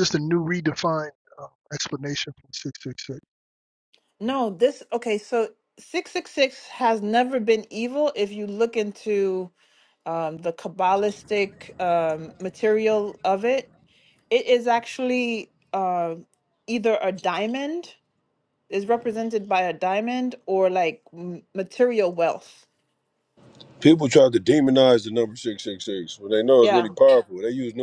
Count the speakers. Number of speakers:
three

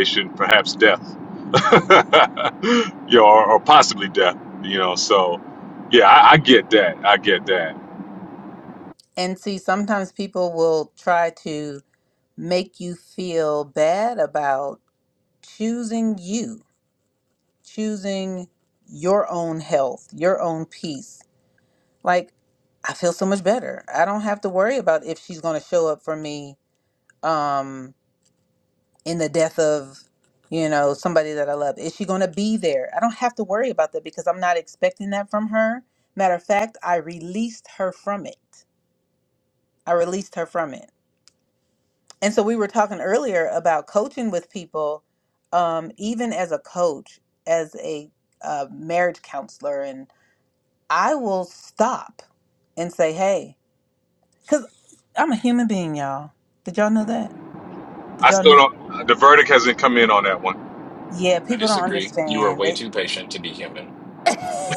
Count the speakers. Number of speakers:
three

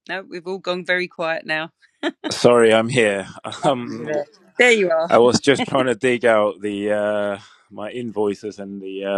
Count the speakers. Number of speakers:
two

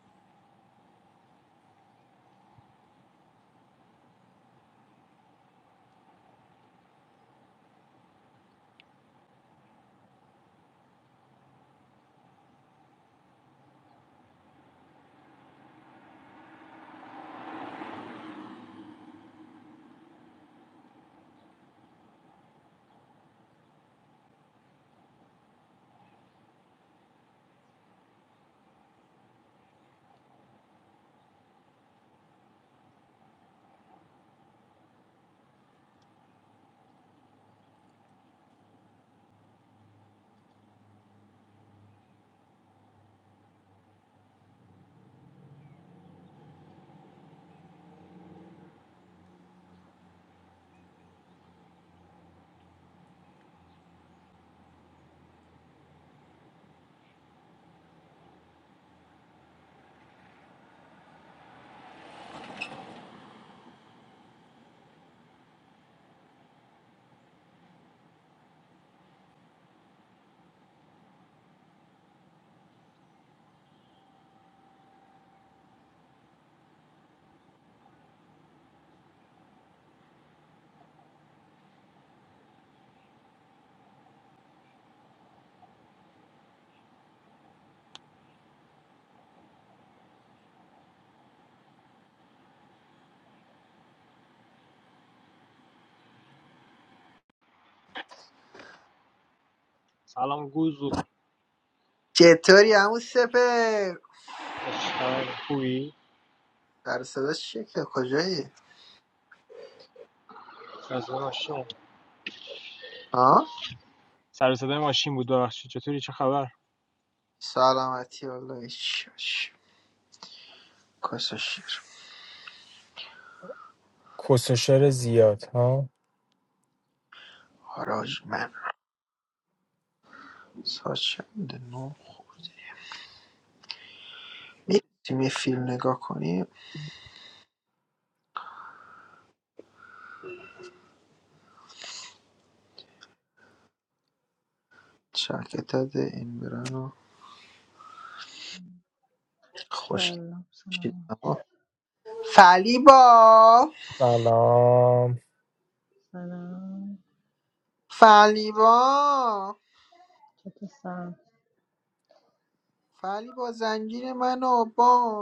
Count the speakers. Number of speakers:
three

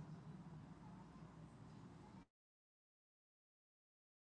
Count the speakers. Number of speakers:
zero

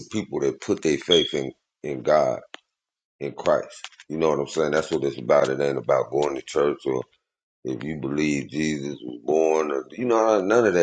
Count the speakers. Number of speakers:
one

